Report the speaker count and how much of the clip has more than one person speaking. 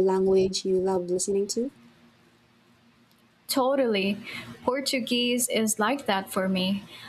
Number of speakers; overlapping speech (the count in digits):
2, no overlap